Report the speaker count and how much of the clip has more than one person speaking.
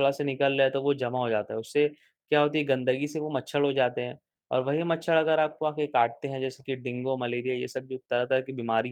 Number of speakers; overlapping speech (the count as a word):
one, no overlap